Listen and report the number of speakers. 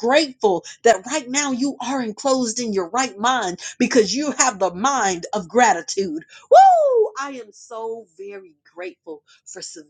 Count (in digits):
1